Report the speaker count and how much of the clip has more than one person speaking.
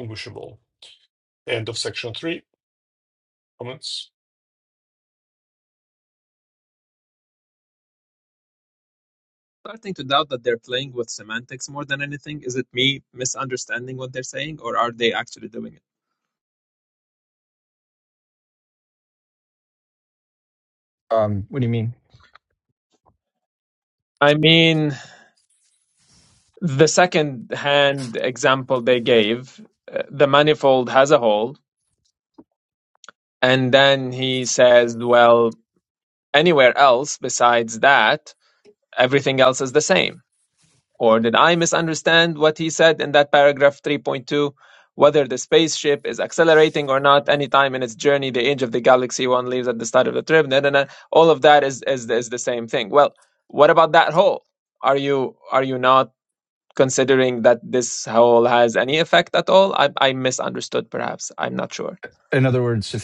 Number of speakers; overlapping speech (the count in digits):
3, no overlap